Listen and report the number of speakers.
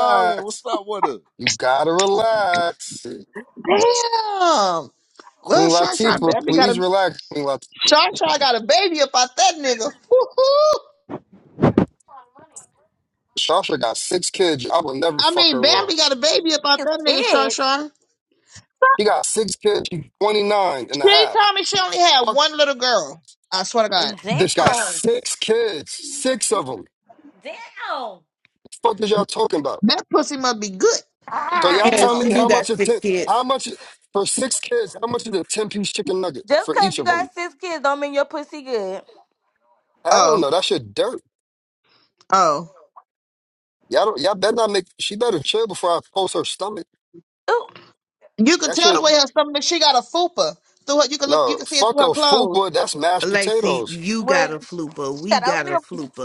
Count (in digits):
5